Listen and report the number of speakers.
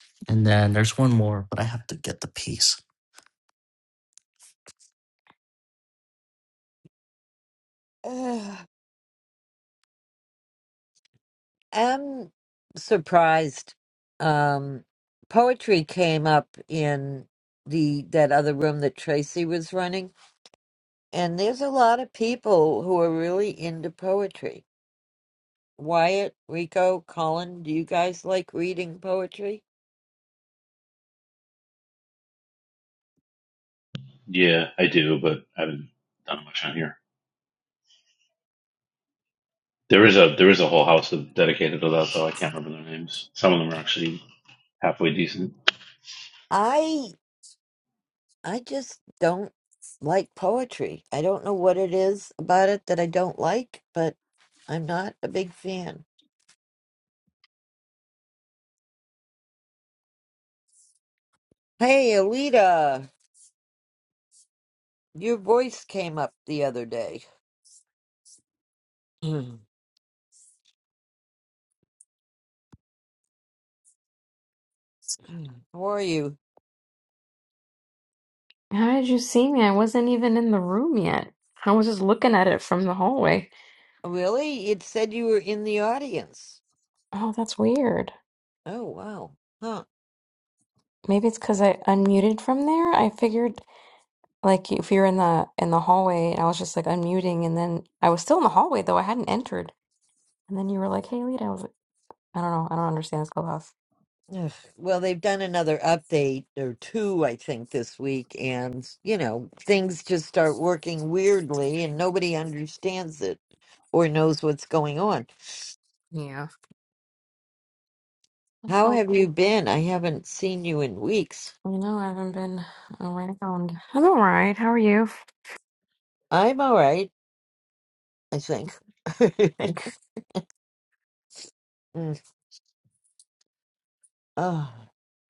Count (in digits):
4